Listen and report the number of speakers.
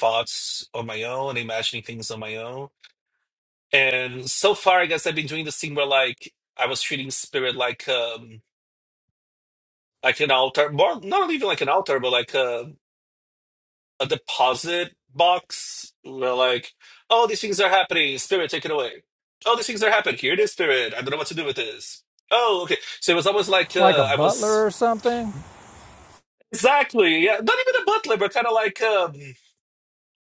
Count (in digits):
2